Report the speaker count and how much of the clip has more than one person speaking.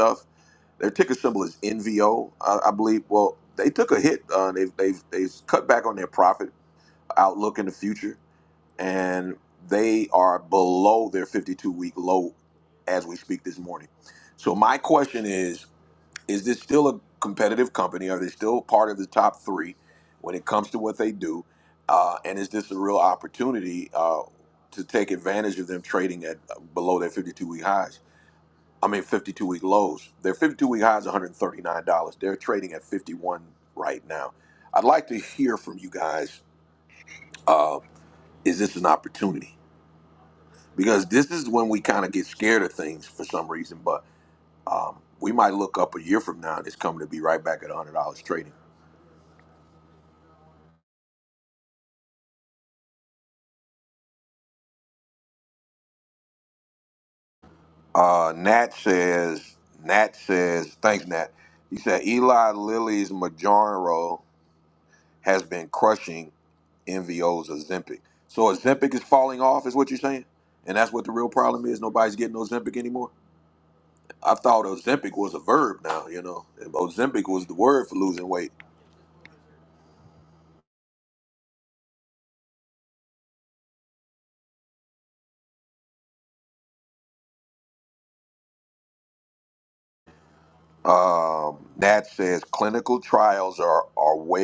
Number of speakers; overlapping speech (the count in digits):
1, no overlap